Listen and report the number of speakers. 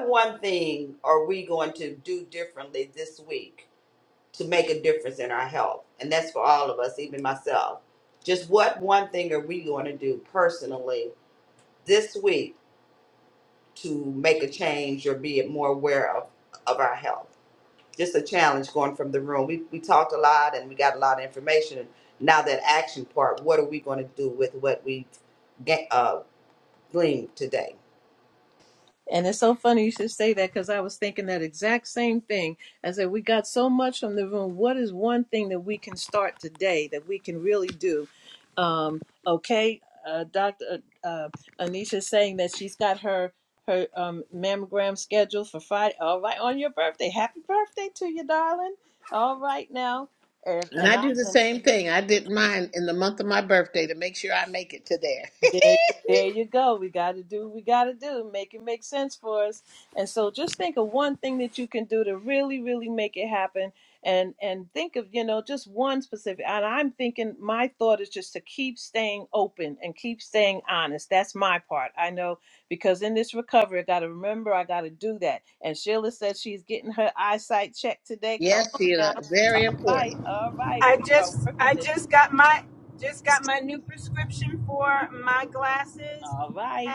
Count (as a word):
four